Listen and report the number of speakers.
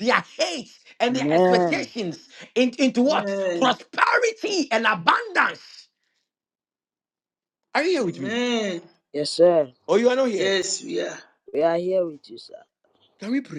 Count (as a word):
three